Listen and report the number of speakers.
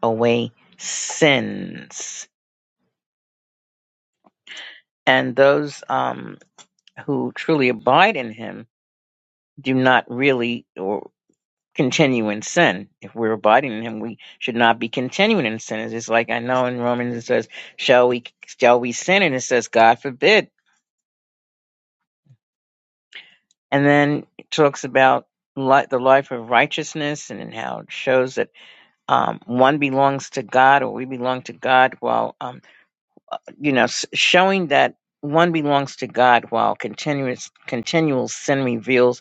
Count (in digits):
1